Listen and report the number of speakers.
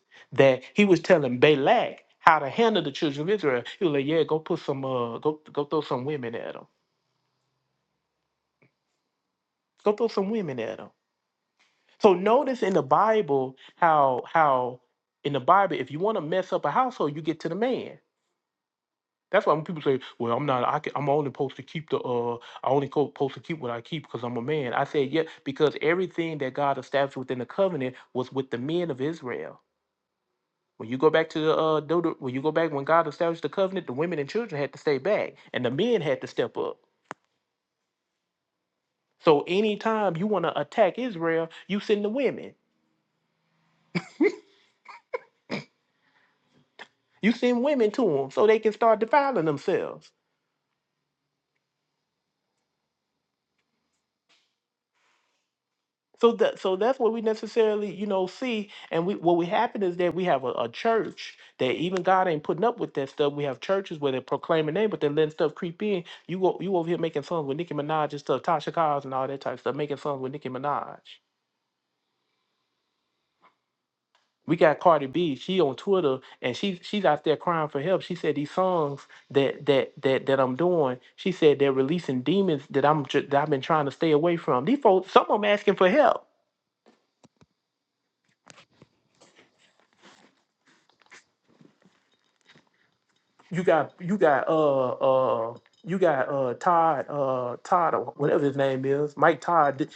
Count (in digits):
1